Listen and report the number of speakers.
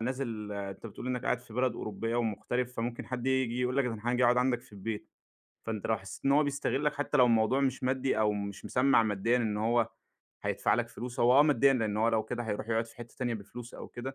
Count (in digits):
1